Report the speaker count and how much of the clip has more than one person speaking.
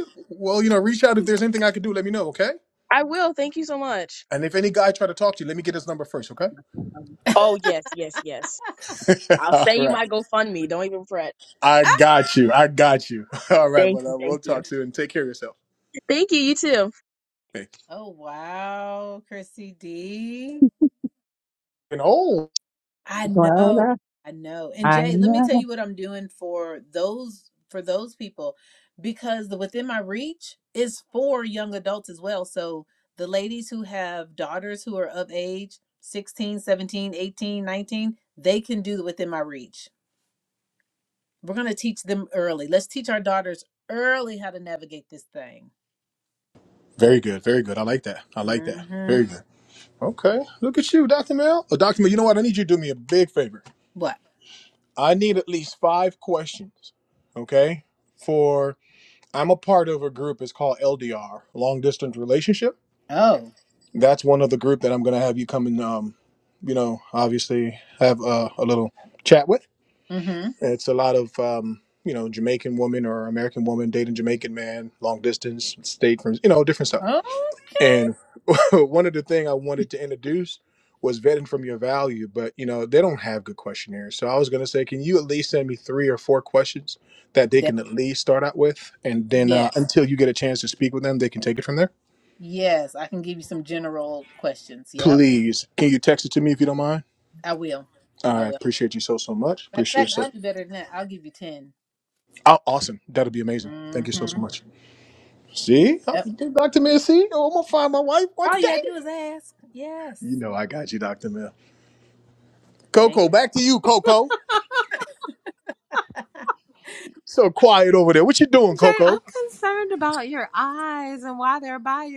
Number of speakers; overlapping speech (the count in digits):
4, about 6%